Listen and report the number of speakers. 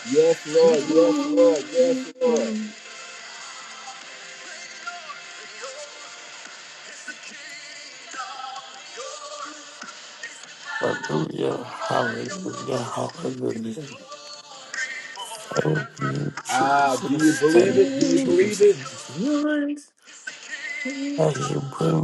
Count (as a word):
three